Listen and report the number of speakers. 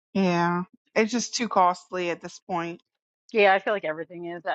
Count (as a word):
two